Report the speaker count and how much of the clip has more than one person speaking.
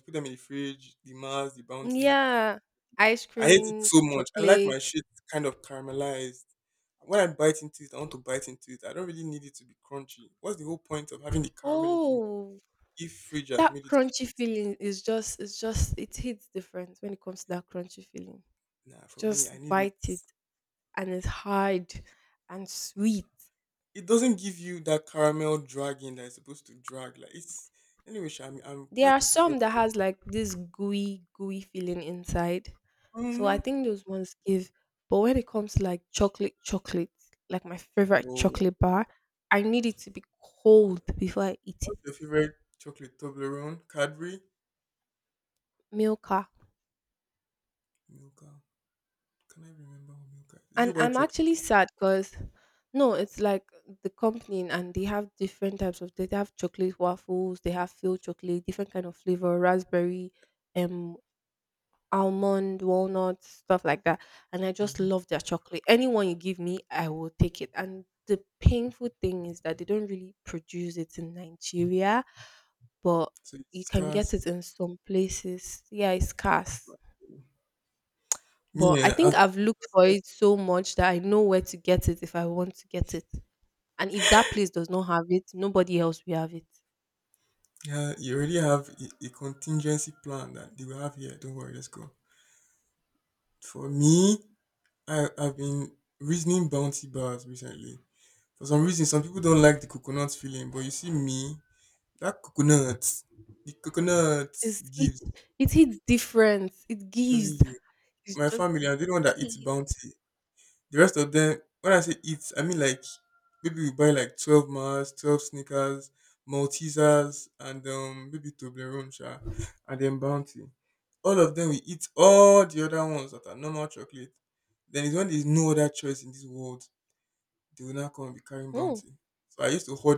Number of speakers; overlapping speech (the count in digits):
2, about 6%